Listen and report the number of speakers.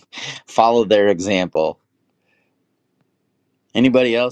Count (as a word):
one